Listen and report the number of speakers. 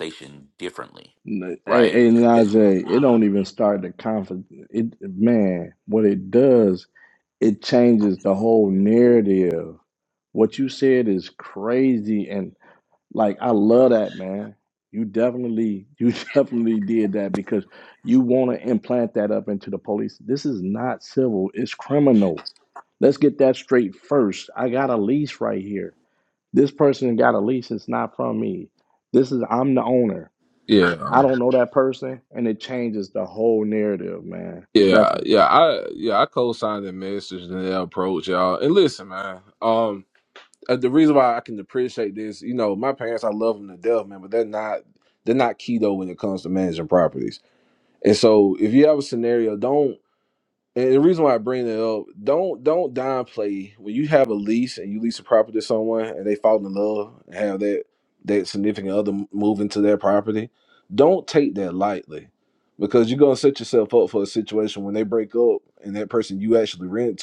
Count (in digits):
3